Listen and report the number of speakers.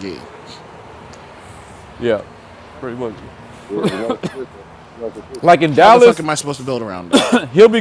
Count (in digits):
3